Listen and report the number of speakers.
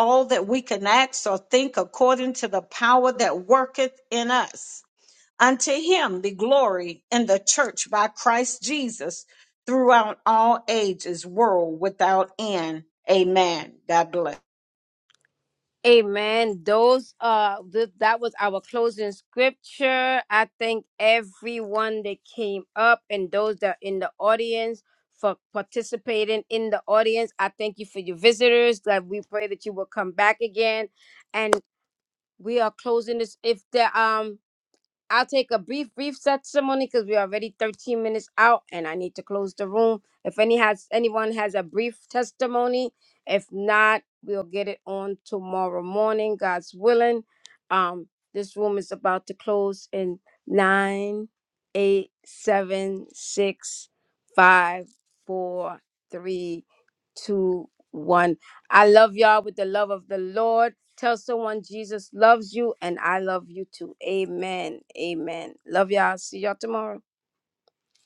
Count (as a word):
two